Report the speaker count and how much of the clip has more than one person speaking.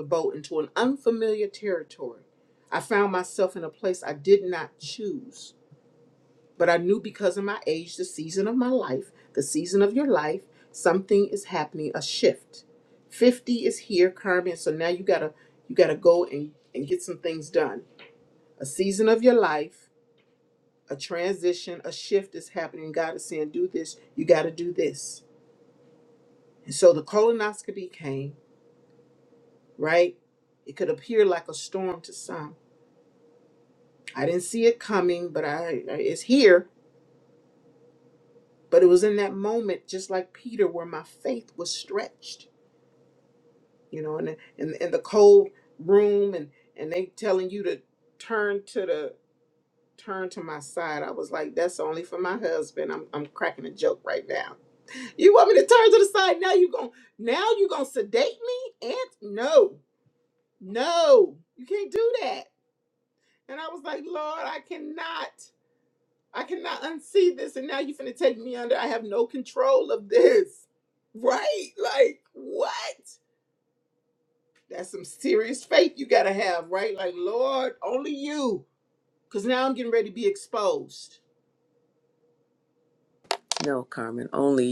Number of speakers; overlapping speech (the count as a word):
two, no overlap